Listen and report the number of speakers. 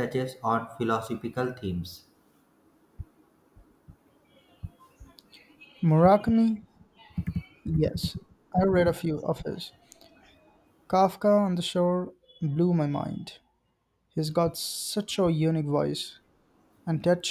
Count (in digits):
2